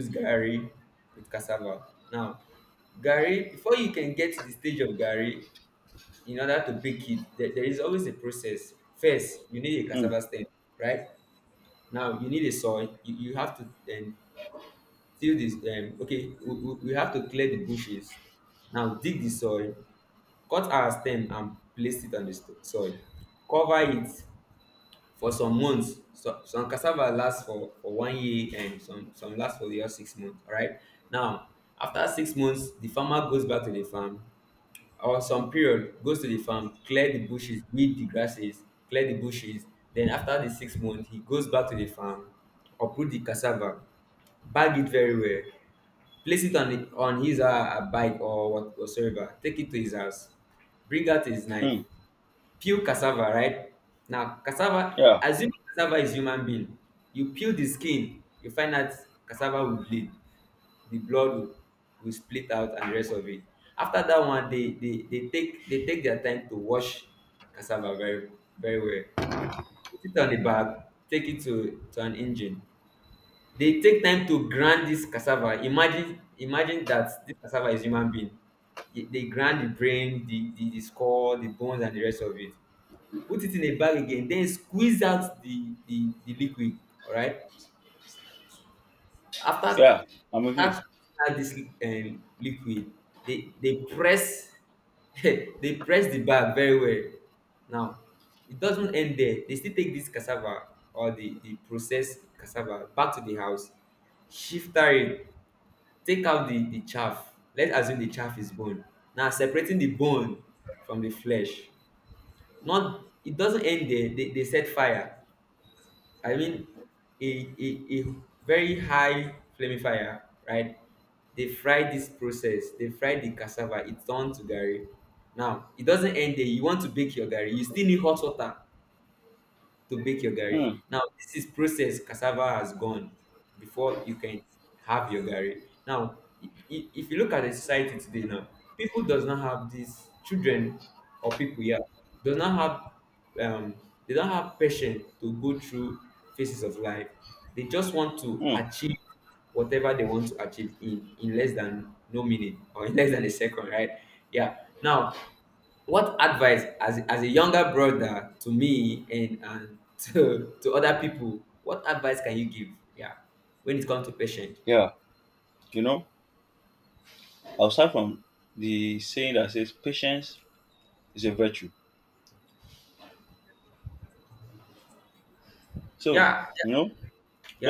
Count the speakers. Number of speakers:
two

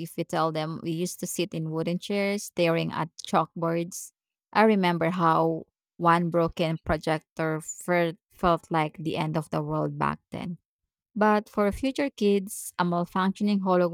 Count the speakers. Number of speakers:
one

